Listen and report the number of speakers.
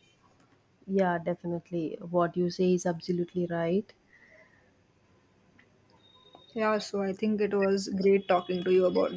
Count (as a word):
two